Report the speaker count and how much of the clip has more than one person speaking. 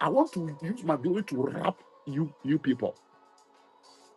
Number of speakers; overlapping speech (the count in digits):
1, no overlap